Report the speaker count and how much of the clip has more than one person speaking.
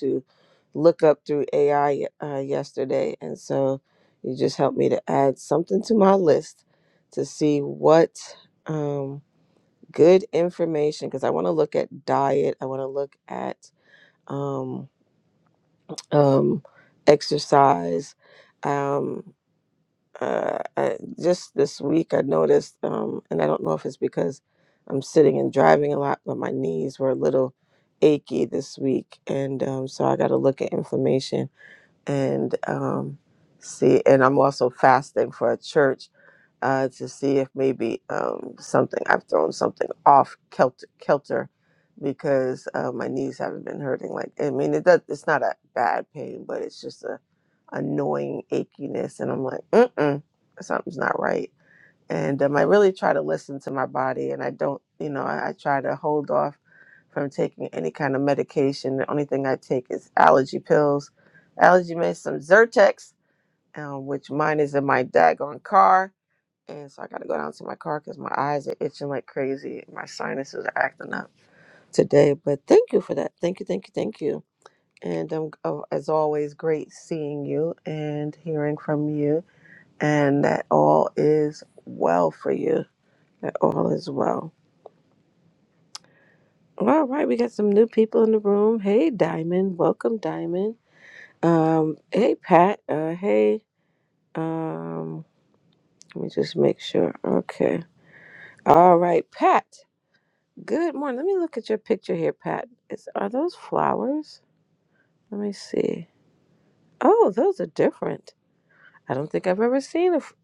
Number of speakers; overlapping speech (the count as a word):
one, no overlap